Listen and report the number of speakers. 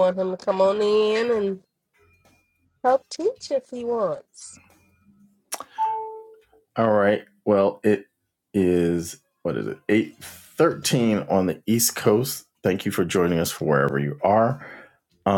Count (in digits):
2